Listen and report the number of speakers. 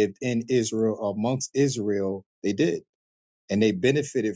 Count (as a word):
one